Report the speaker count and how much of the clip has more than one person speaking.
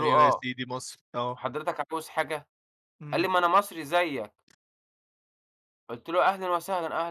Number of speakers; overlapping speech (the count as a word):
two, about 8%